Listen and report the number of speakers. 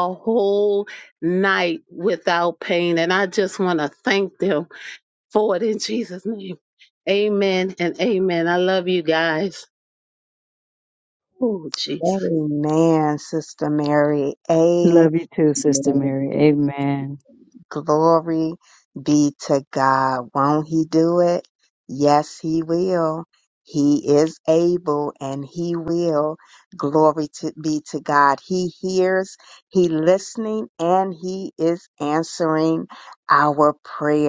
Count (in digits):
3